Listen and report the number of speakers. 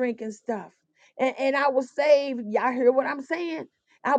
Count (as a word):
one